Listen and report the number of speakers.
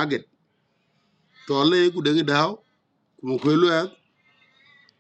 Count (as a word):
one